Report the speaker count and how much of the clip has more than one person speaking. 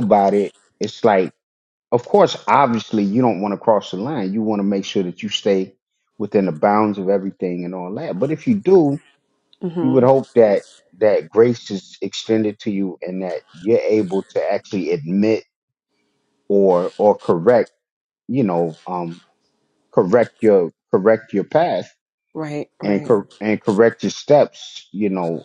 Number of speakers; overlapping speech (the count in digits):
2, about 2%